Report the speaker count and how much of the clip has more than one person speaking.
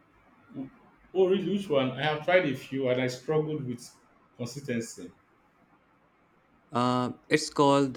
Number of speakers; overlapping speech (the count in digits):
2, no overlap